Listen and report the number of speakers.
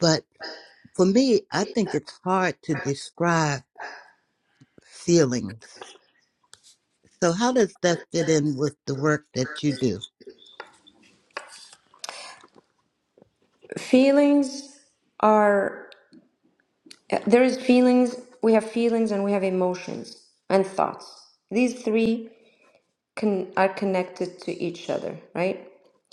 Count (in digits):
2